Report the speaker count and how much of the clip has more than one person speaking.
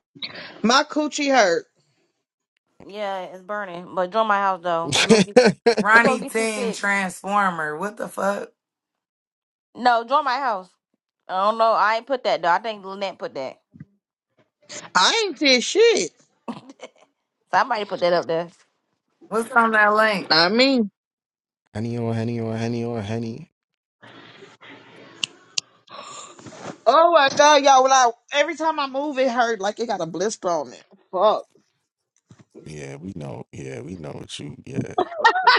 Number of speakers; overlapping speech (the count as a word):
four, about 2%